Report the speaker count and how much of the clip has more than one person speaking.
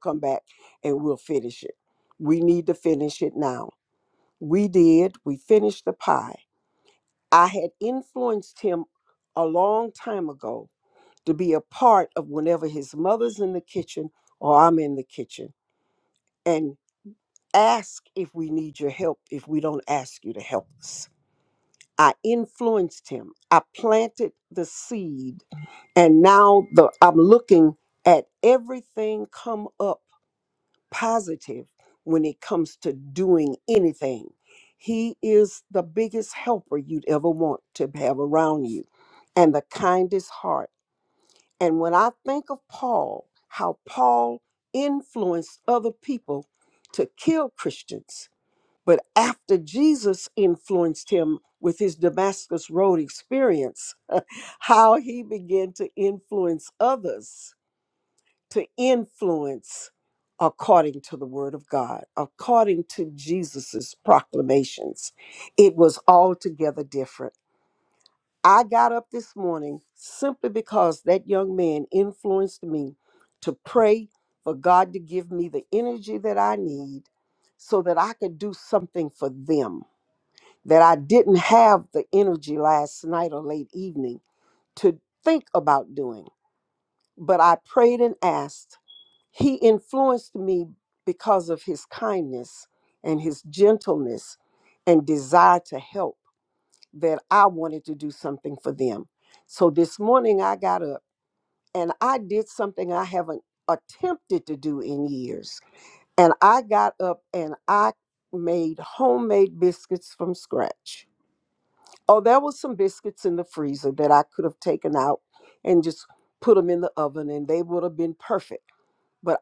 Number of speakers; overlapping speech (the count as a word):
one, no overlap